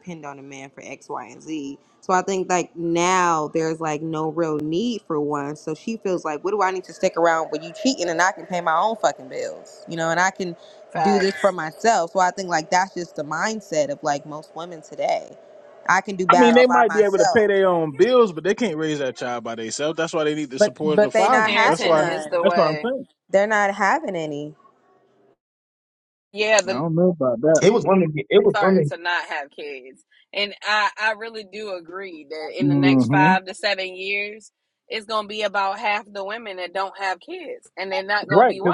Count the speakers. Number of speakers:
4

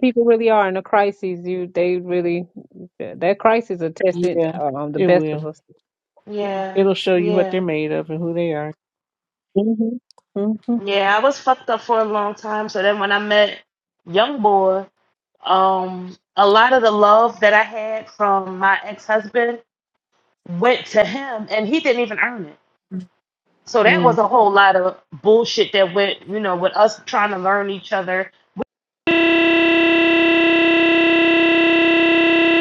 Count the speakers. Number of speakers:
3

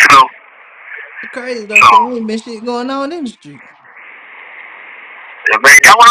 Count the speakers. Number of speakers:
2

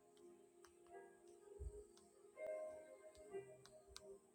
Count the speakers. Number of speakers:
0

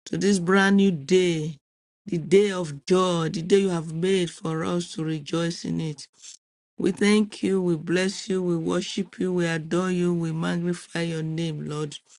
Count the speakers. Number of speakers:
1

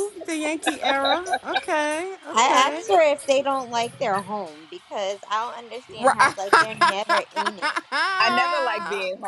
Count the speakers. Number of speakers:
3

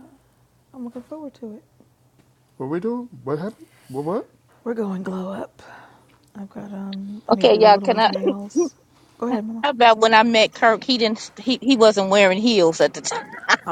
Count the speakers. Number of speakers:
3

